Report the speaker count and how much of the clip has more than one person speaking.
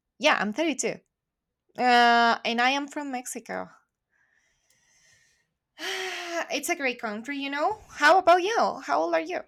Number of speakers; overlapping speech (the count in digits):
1, no overlap